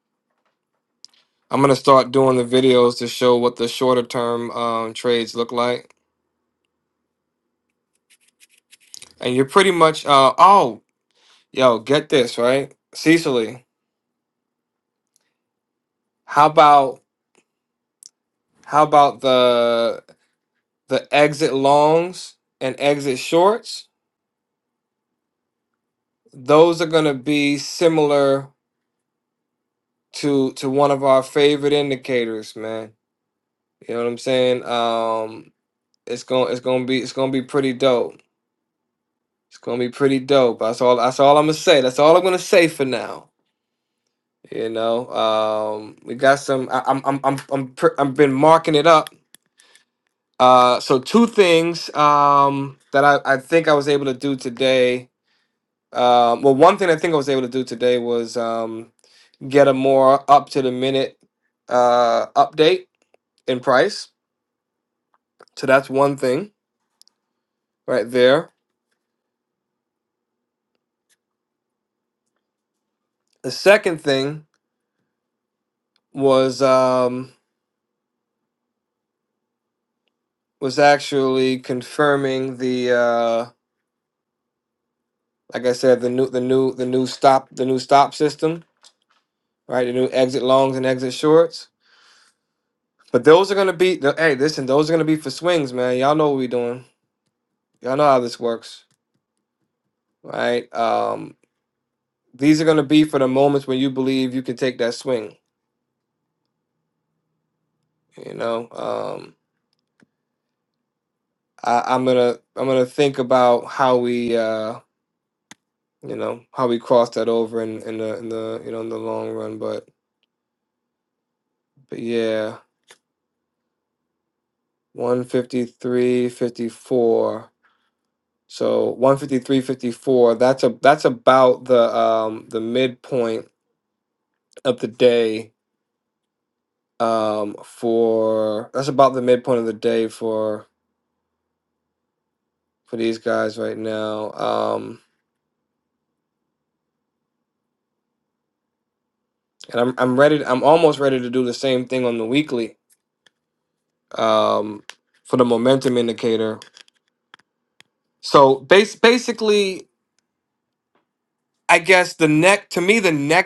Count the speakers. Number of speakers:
one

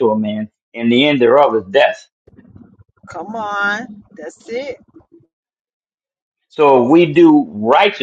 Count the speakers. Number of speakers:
two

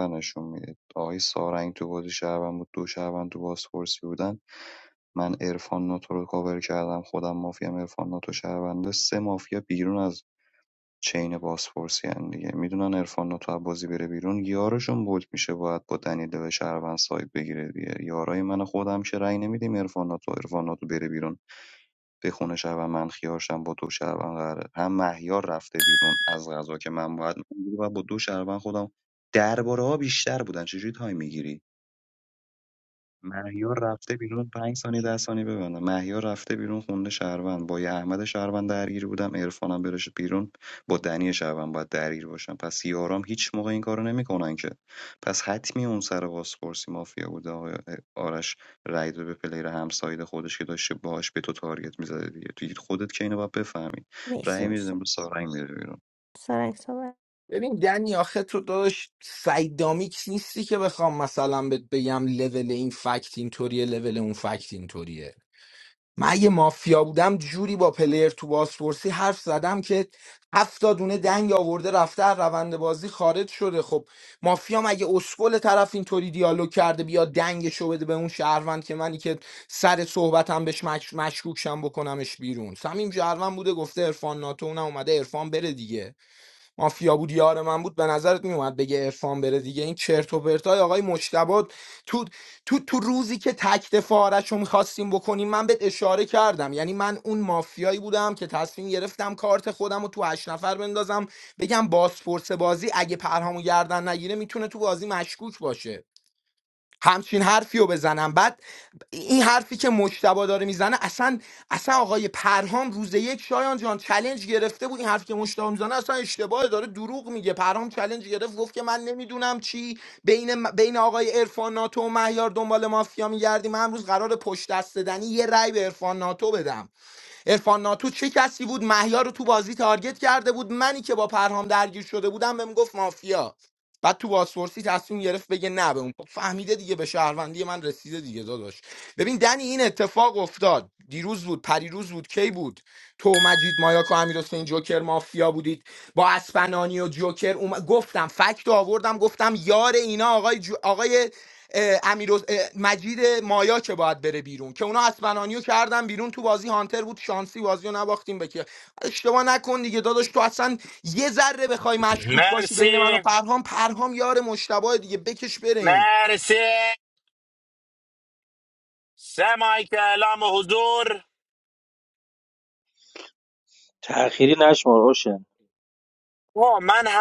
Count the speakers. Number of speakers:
five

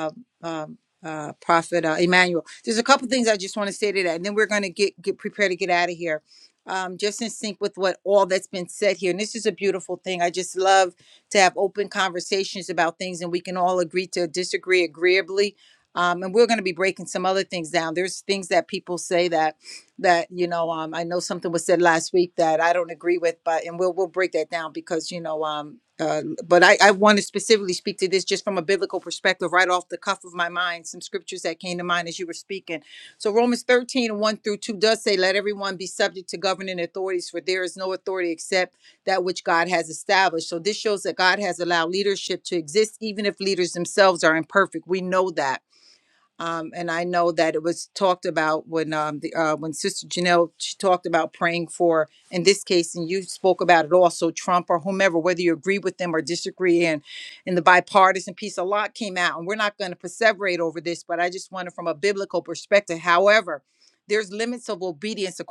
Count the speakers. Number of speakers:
one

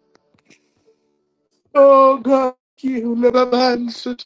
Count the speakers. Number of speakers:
one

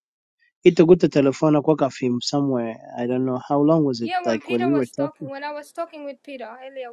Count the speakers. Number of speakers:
two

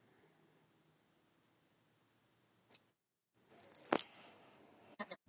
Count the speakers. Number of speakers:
zero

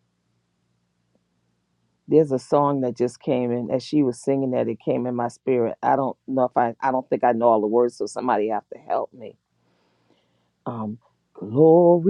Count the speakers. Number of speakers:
one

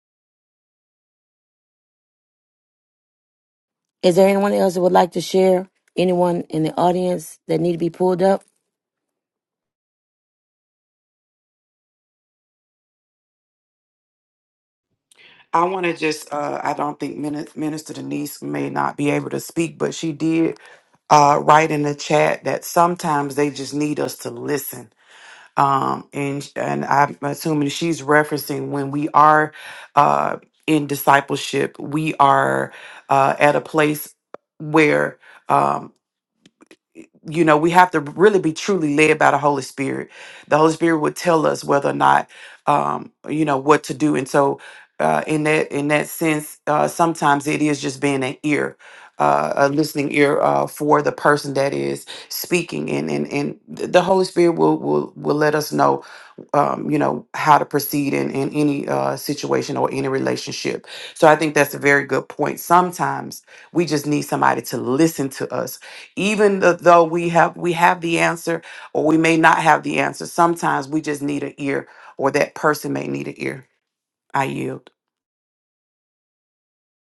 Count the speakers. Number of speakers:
two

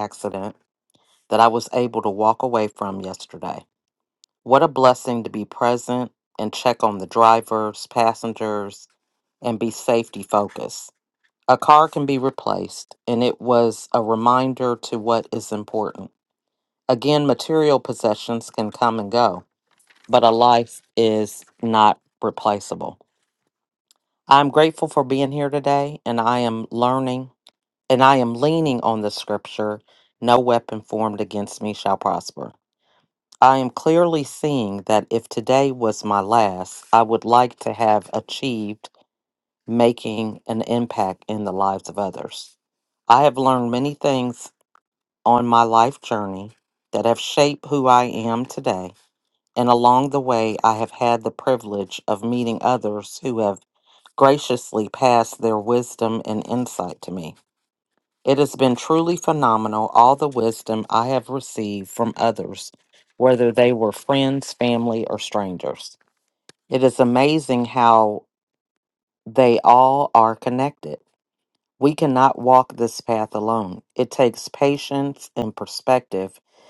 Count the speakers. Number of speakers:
one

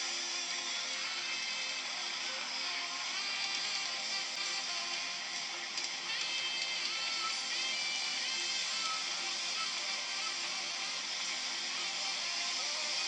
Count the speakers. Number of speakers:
zero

